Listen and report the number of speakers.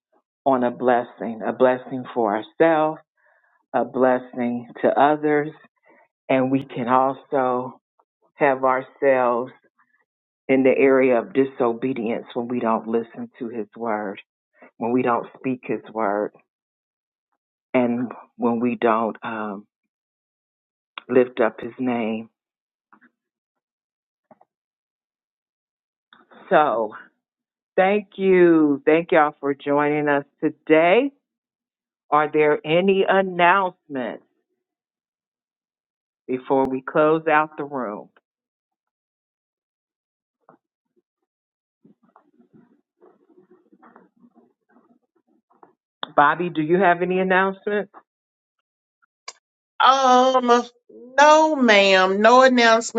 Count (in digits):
2